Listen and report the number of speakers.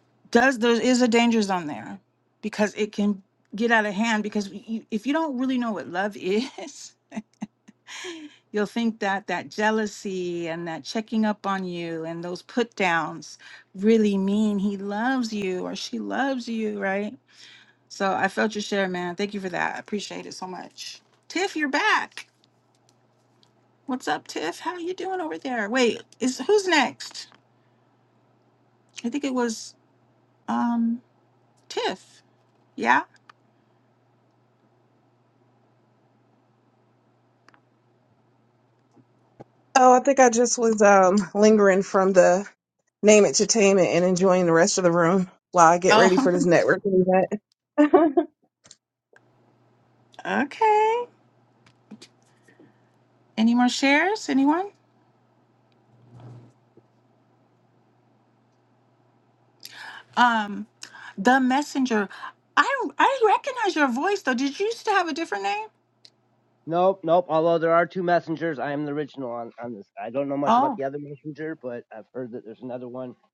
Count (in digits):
3